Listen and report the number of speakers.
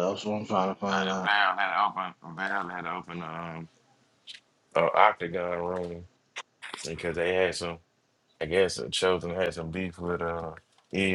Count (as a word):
two